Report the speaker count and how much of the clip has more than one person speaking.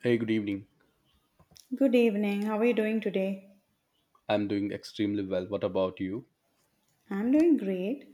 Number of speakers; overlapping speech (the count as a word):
two, no overlap